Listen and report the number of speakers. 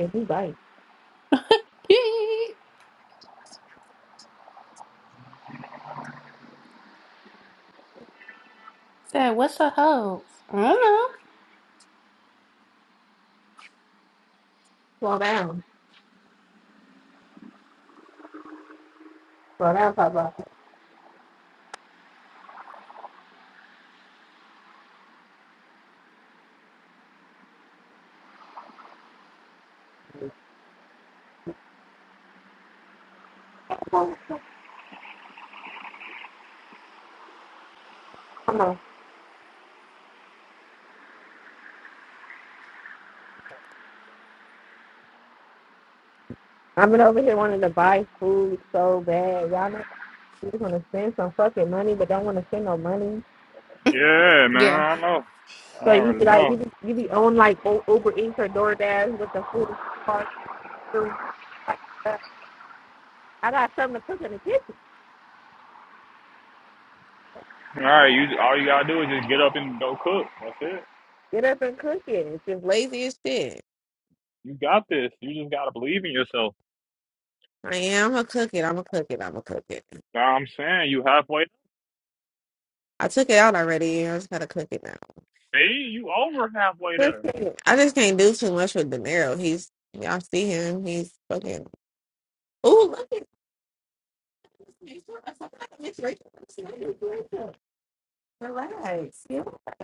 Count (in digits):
3